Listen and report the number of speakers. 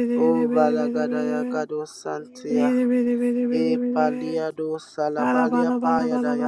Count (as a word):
two